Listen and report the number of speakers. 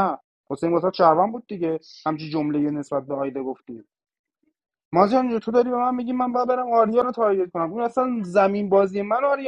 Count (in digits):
1